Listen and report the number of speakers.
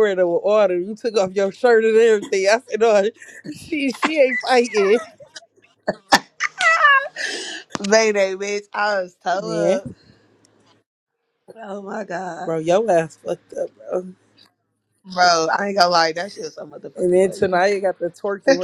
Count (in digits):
2